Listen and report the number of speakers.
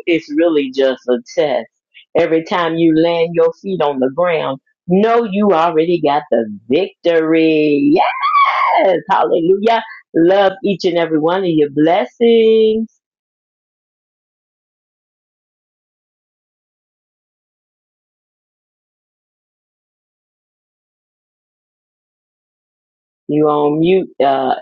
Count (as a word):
one